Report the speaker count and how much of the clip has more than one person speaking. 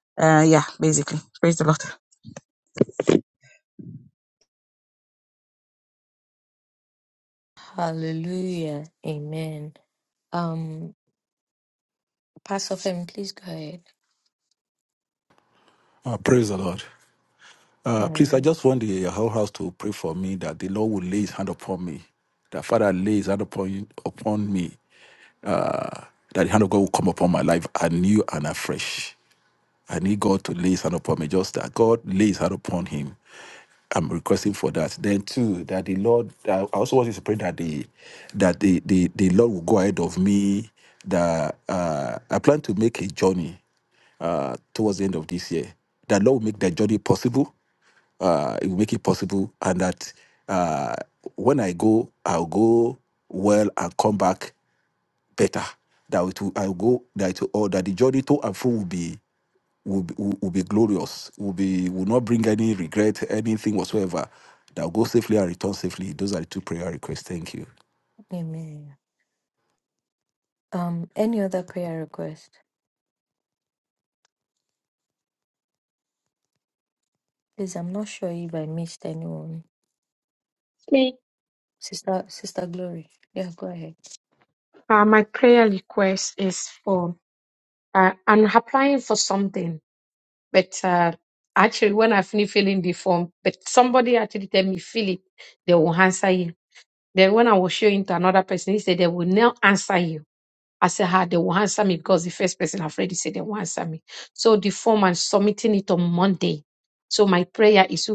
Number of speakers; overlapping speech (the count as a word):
four, under 1%